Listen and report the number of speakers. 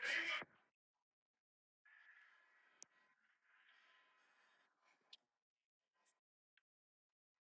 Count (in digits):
0